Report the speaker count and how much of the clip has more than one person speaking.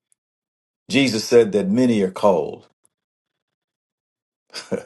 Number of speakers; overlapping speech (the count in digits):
1, no overlap